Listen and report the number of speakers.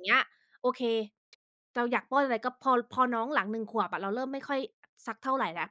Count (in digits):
1